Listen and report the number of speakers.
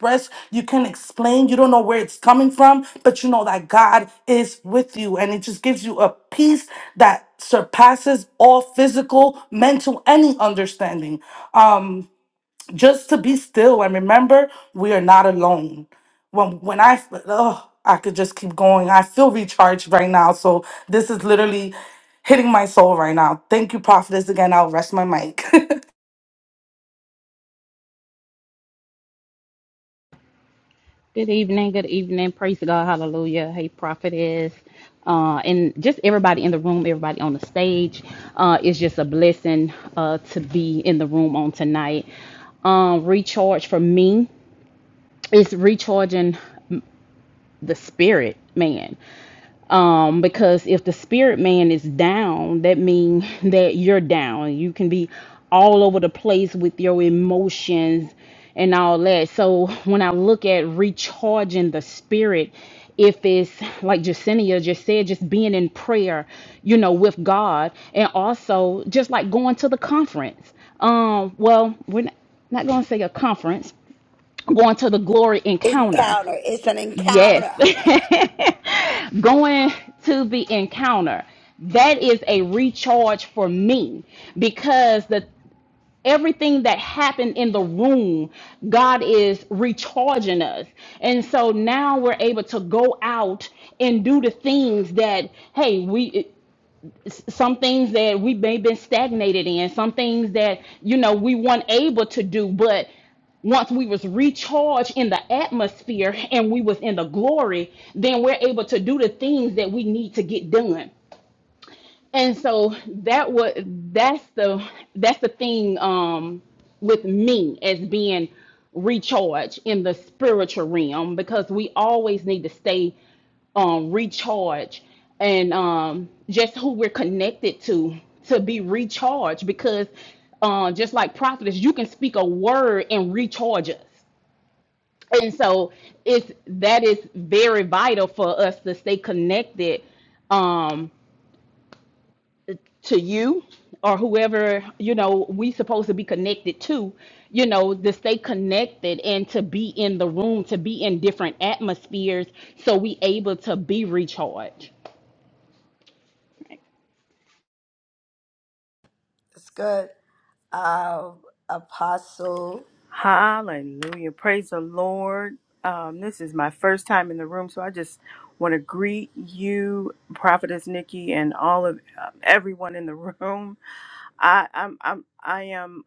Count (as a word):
four